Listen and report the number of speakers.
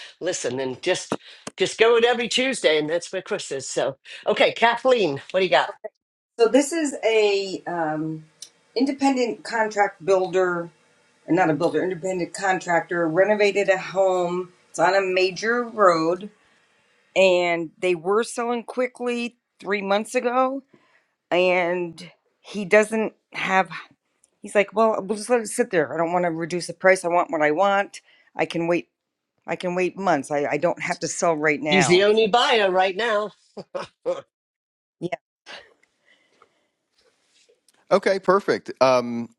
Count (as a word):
three